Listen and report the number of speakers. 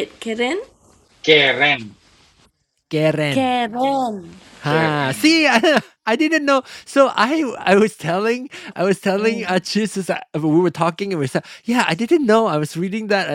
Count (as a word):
three